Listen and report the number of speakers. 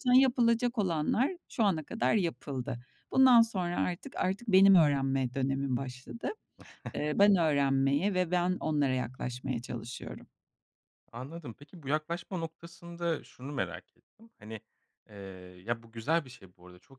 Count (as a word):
two